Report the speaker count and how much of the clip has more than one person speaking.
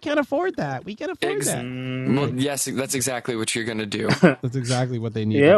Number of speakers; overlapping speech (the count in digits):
3, about 18%